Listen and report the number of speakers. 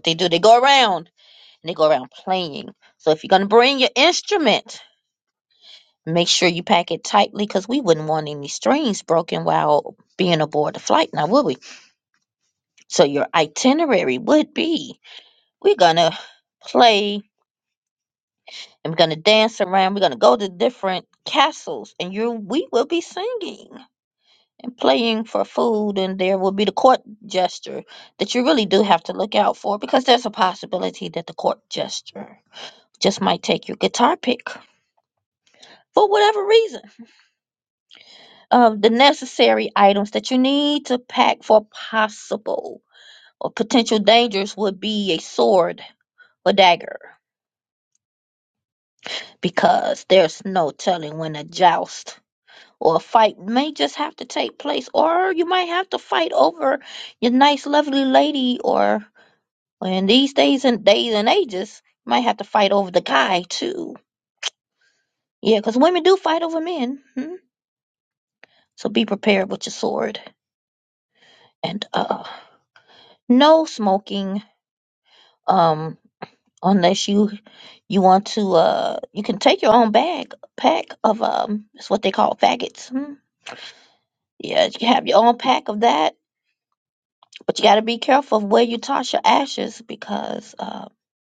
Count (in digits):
1